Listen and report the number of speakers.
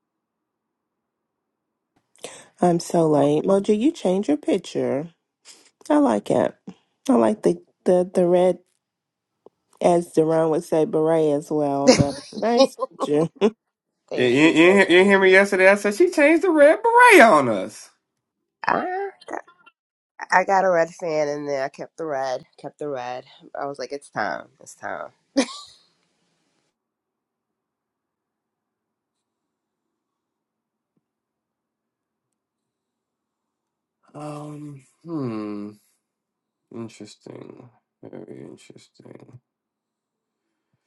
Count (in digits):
3